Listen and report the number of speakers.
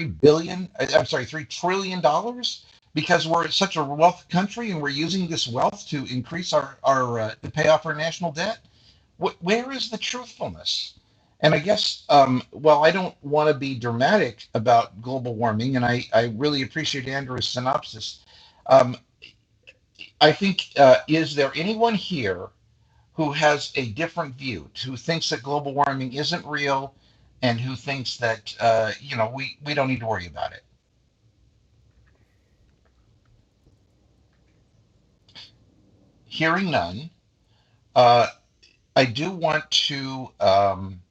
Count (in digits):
1